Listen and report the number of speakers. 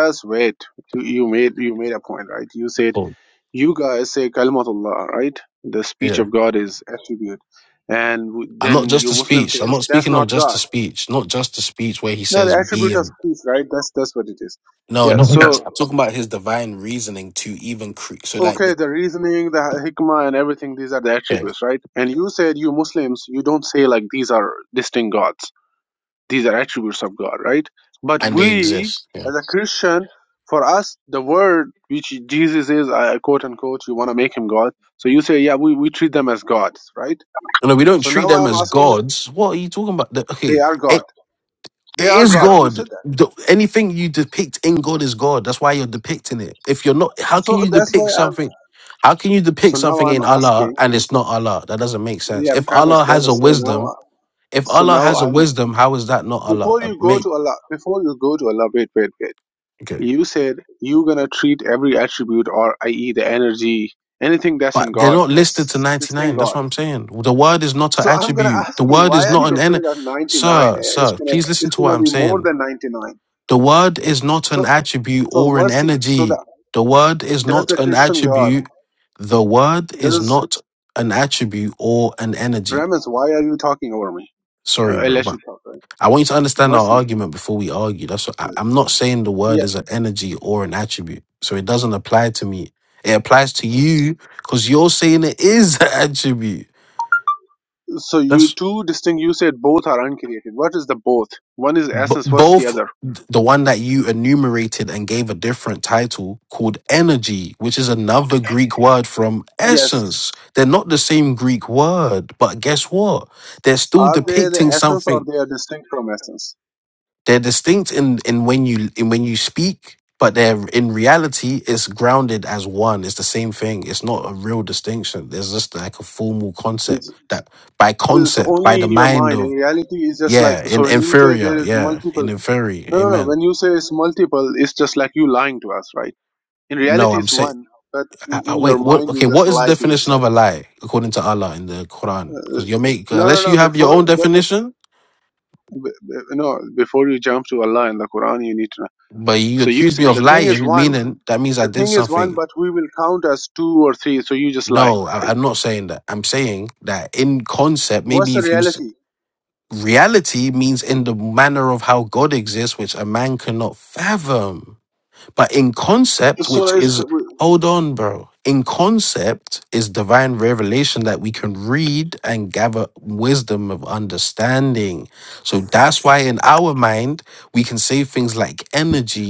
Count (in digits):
2